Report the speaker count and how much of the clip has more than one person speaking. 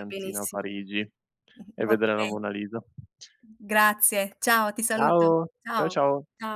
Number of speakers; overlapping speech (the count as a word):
two, about 28%